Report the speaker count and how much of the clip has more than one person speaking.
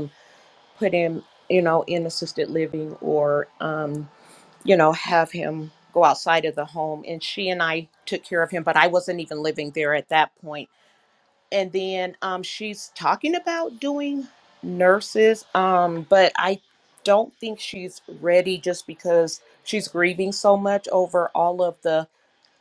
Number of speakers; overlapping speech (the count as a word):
one, no overlap